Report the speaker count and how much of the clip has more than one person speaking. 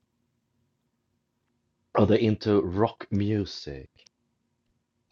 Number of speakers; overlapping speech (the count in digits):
1, no overlap